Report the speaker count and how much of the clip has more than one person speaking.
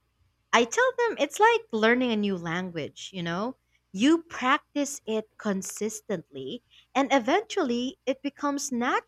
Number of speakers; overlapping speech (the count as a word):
one, no overlap